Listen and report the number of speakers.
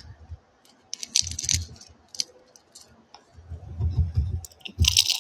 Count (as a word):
zero